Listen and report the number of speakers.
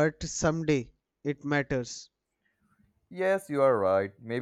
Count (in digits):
2